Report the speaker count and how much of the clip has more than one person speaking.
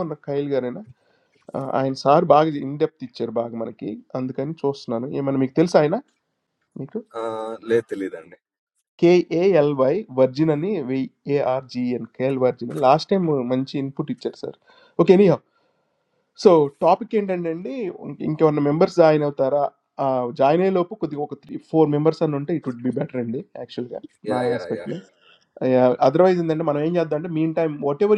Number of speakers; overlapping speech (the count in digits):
2, about 2%